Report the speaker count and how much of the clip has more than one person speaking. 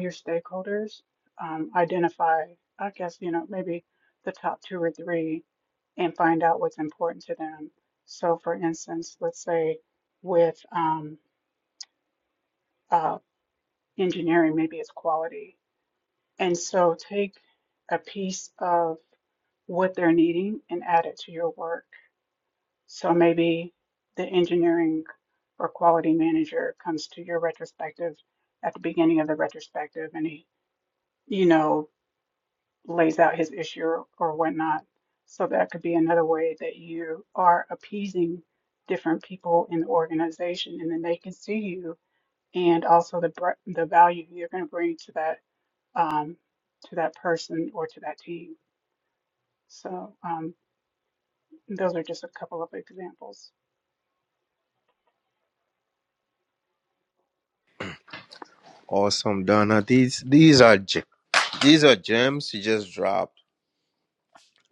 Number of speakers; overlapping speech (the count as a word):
two, no overlap